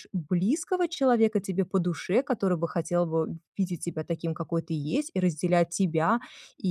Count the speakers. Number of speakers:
1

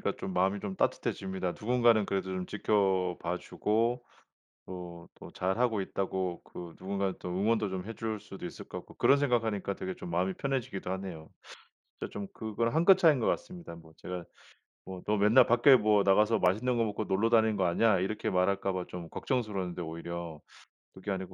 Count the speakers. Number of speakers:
1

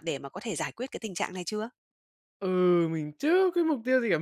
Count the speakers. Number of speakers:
2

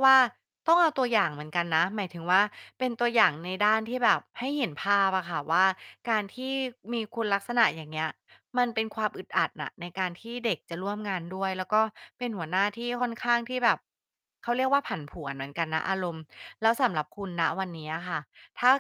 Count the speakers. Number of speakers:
1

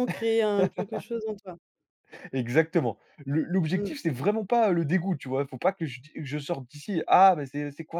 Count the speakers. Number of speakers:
2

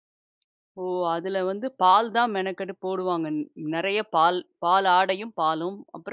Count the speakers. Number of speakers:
1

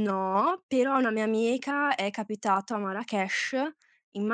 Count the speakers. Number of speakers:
1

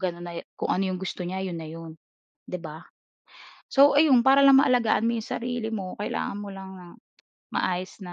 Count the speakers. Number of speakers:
1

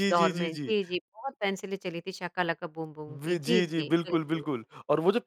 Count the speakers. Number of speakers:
2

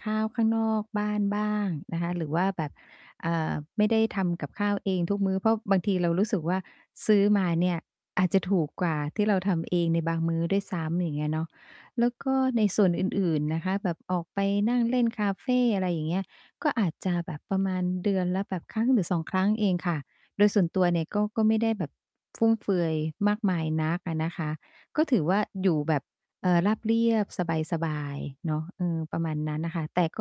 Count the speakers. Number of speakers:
1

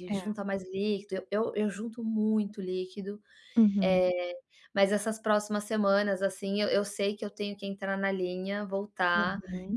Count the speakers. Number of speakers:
2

